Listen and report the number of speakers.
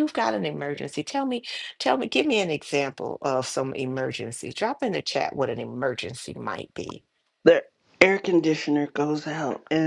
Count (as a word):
two